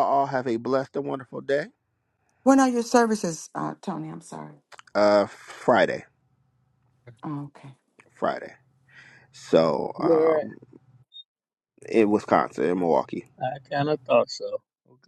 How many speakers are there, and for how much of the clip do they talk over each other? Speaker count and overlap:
three, about 3%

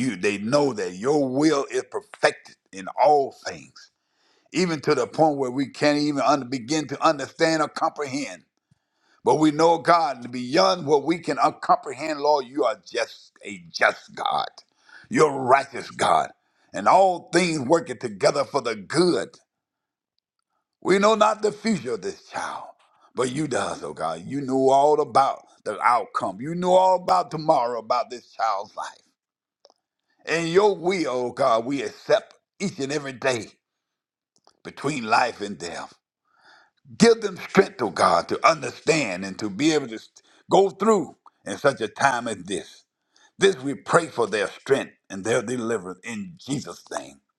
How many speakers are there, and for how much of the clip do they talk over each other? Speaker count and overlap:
one, no overlap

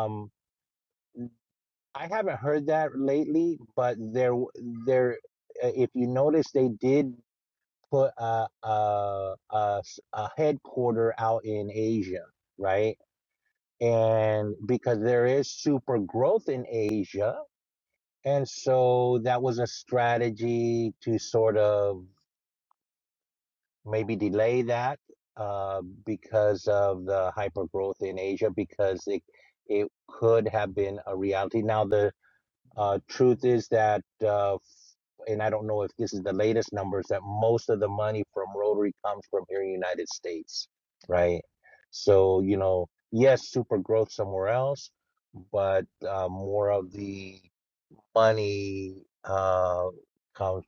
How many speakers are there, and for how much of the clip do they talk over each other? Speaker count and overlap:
one, no overlap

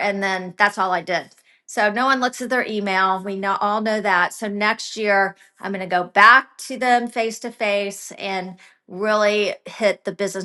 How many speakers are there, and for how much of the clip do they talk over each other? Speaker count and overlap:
one, no overlap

